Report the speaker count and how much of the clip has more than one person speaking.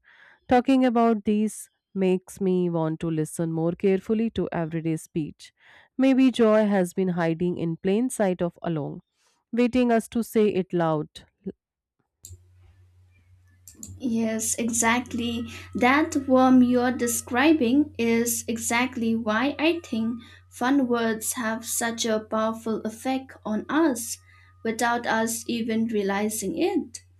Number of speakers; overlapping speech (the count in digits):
2, no overlap